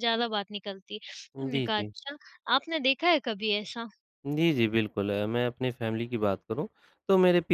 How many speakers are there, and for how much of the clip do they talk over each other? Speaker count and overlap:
two, about 6%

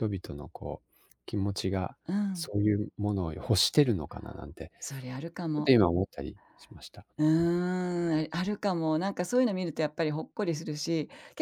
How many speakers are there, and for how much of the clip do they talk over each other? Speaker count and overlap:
two, about 1%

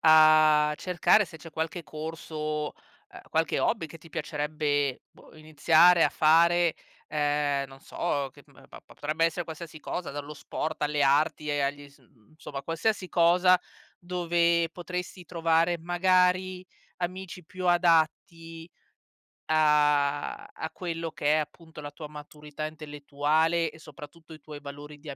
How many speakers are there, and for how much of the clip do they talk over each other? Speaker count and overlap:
one, no overlap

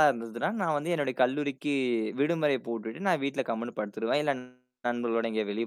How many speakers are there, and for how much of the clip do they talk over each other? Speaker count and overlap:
one, no overlap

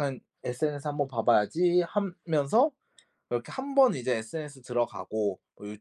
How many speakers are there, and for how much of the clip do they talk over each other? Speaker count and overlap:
one, no overlap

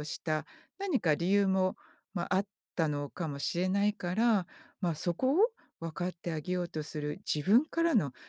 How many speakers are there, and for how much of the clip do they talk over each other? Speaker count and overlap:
one, no overlap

